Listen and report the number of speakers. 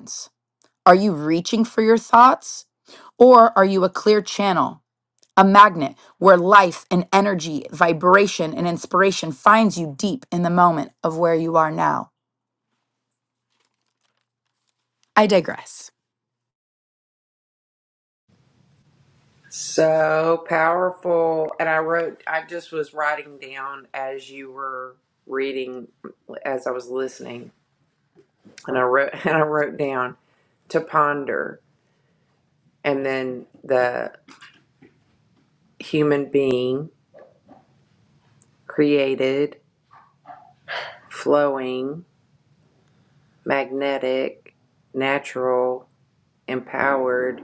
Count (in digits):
2